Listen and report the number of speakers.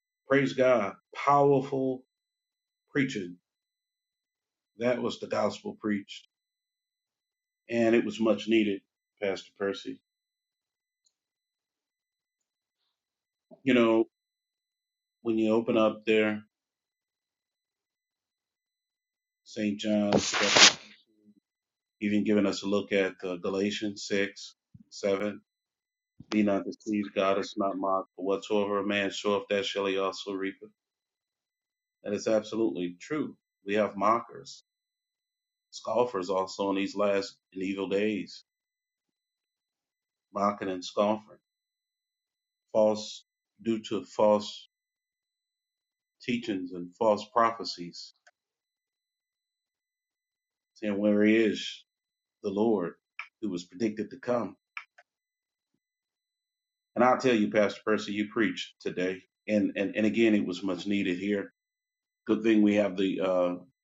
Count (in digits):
1